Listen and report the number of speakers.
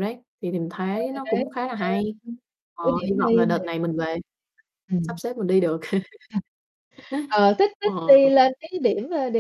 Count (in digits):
2